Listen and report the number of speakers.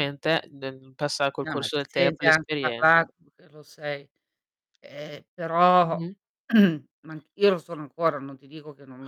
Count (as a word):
two